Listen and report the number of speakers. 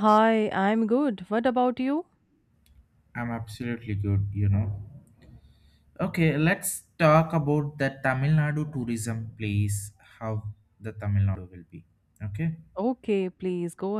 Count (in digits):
2